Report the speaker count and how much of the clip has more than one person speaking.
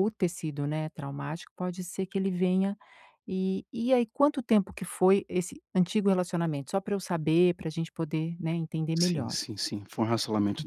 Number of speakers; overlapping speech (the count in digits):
2, about 4%